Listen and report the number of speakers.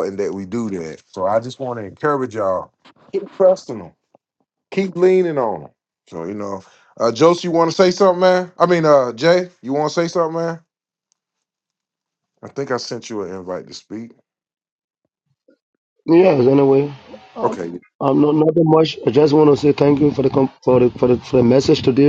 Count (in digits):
2